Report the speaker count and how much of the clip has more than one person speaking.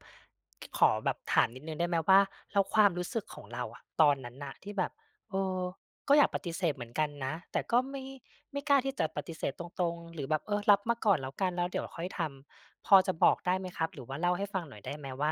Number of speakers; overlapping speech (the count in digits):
1, no overlap